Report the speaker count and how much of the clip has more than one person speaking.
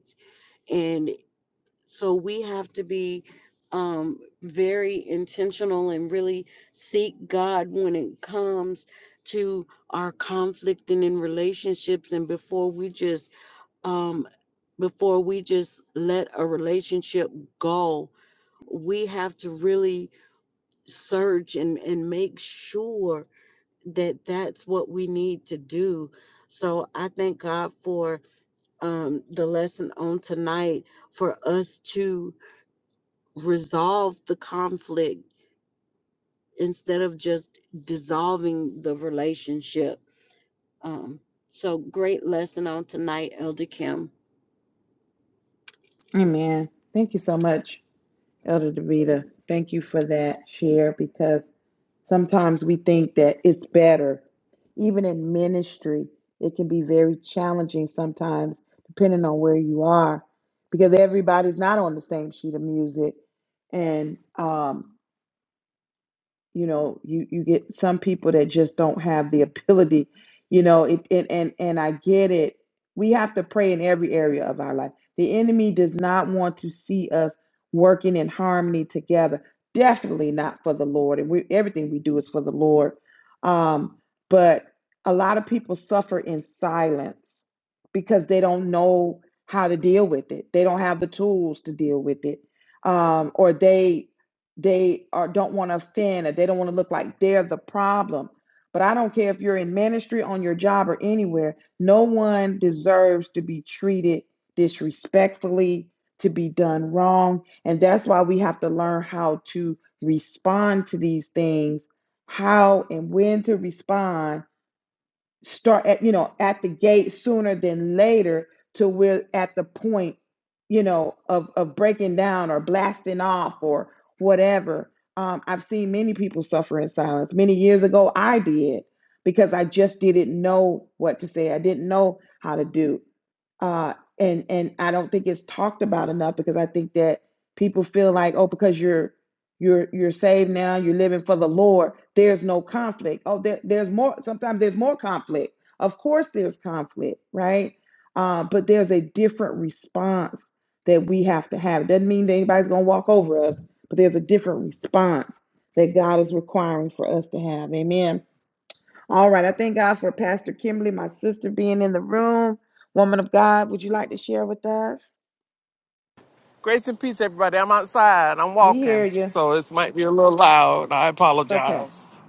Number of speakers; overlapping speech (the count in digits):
3, under 1%